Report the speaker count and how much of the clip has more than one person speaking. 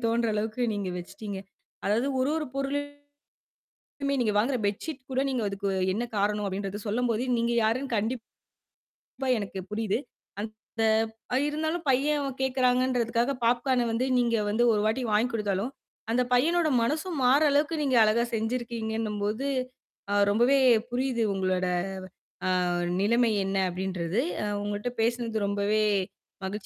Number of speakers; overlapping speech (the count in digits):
1, no overlap